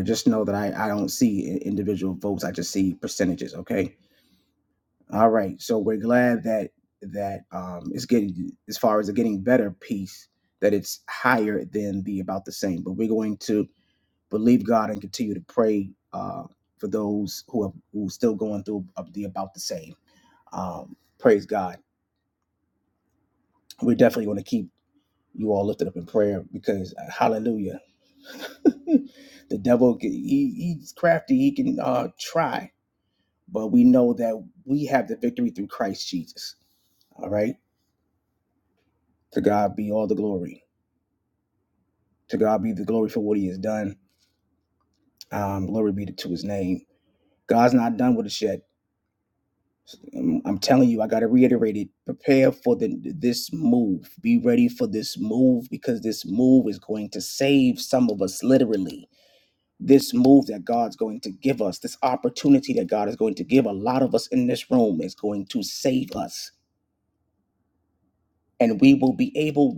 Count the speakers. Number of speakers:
1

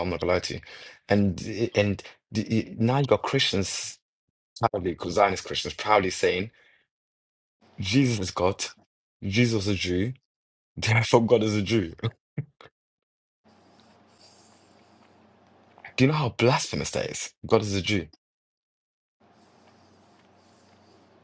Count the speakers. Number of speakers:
1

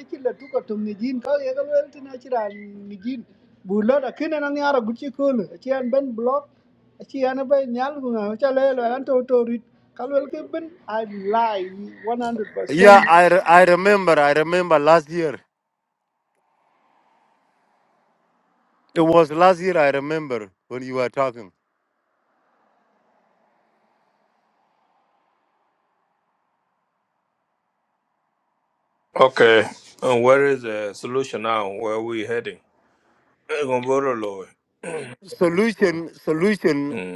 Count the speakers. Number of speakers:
3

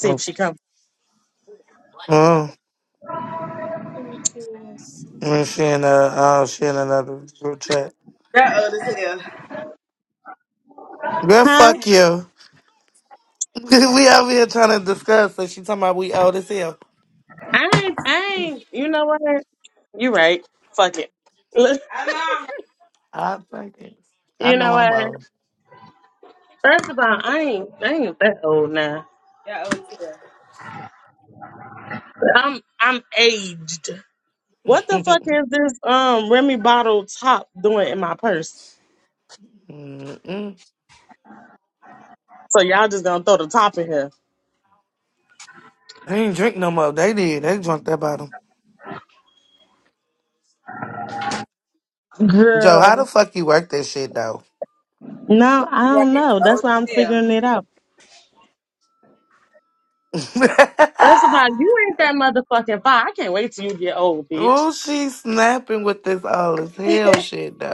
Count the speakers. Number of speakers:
3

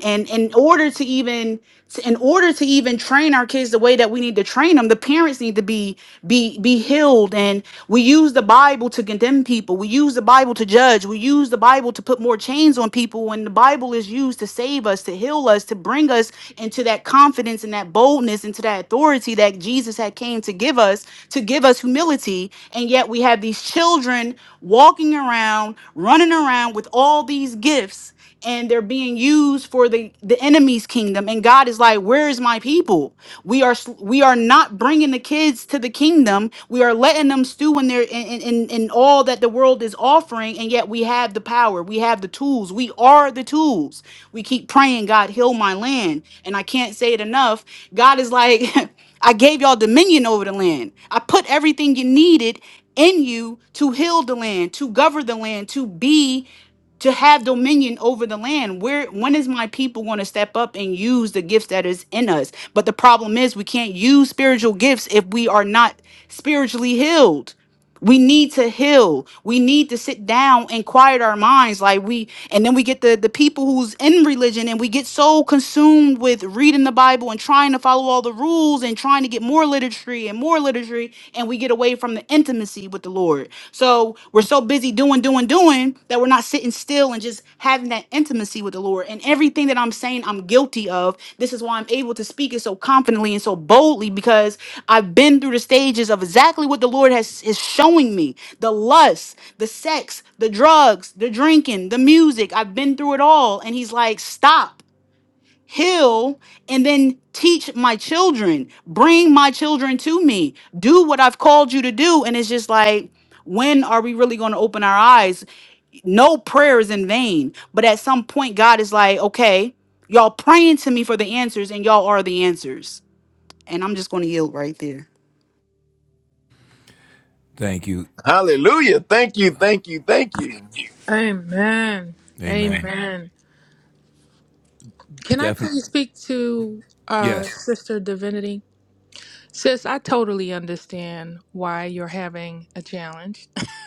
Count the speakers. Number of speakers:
4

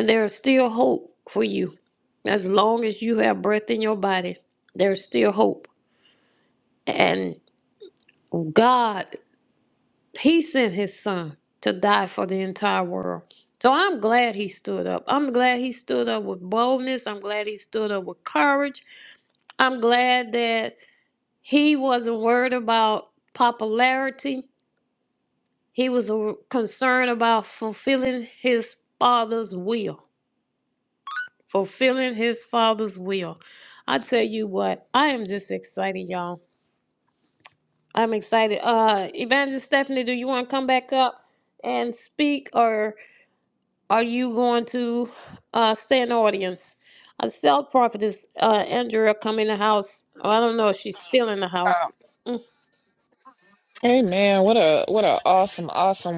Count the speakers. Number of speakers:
2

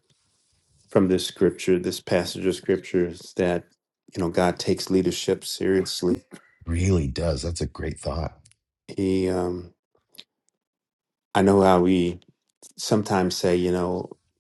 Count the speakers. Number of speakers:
2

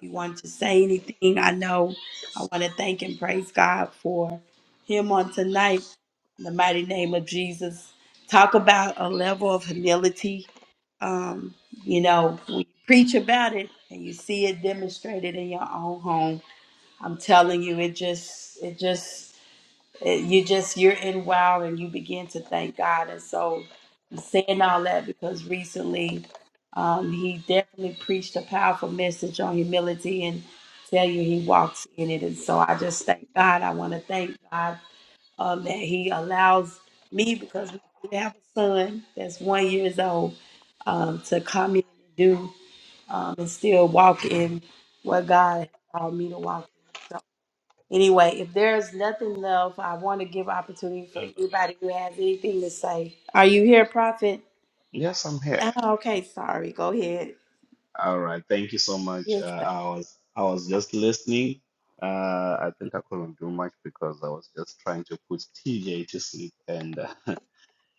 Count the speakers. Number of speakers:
2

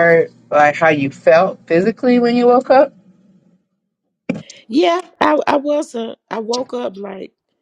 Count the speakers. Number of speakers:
2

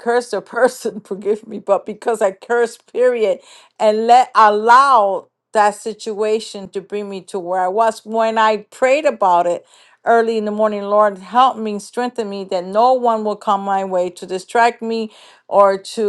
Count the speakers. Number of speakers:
1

